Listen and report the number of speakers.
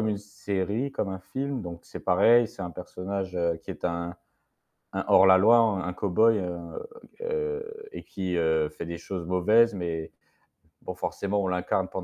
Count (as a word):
one